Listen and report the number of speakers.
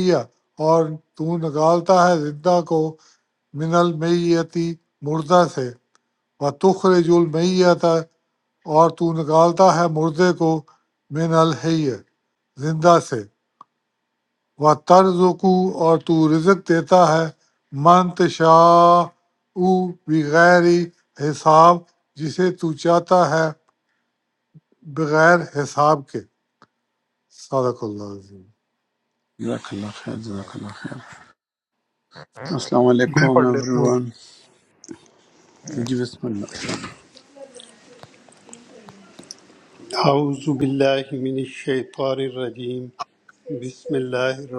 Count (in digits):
3